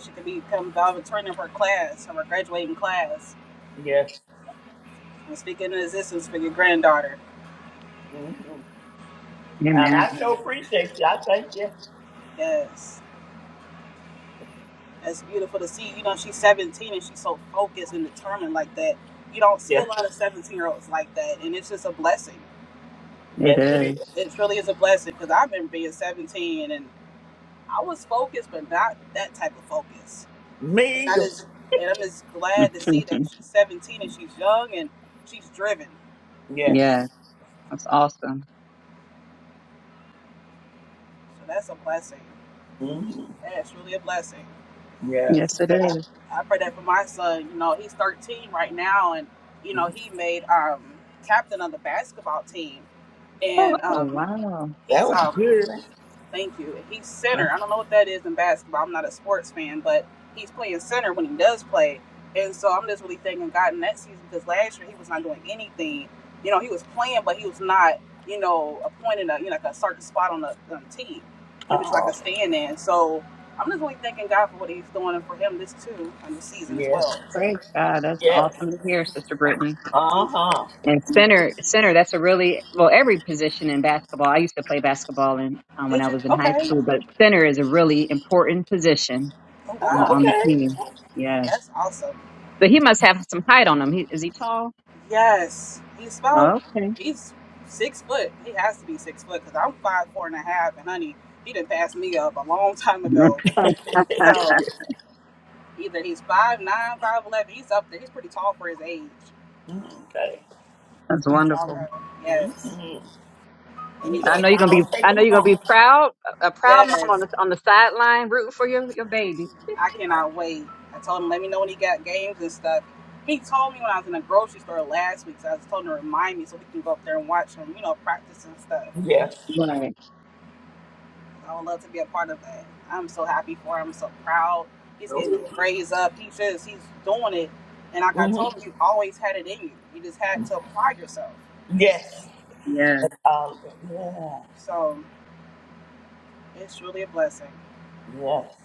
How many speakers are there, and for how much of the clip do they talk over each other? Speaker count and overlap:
3, about 7%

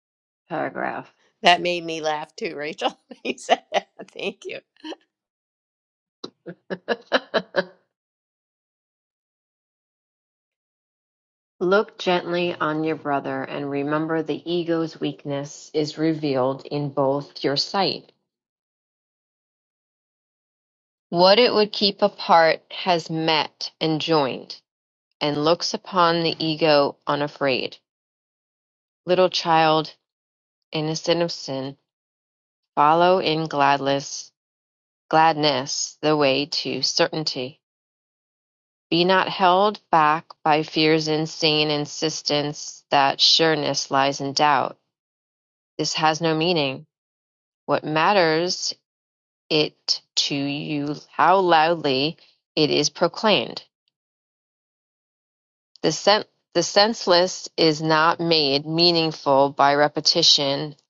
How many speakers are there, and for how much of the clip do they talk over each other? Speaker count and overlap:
2, no overlap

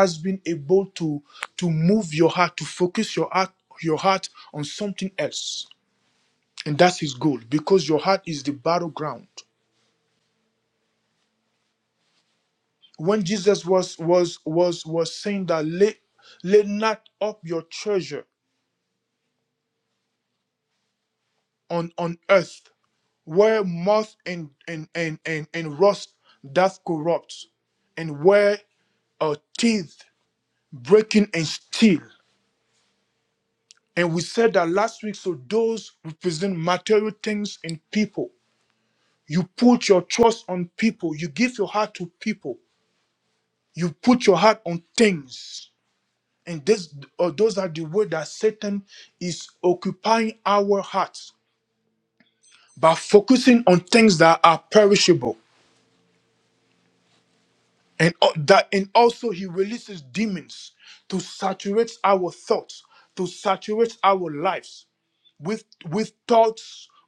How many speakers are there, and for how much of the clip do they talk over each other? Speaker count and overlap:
1, no overlap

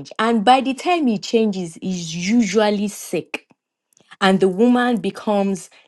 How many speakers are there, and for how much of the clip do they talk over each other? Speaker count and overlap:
1, no overlap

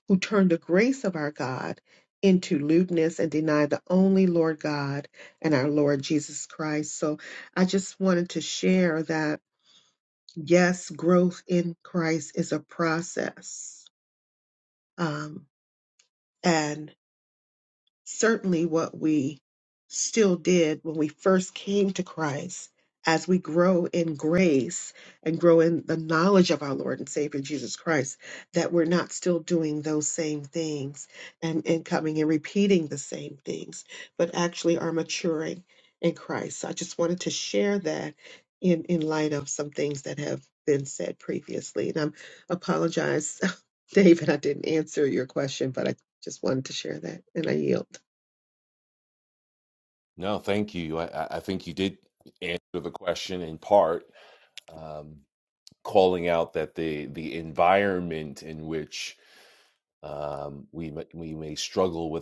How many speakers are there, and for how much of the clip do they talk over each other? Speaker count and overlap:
2, no overlap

